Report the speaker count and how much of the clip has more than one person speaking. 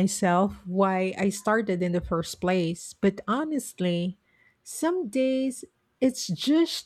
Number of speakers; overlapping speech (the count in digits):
1, no overlap